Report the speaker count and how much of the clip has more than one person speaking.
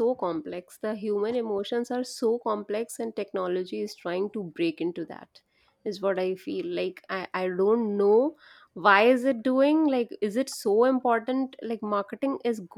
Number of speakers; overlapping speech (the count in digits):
1, no overlap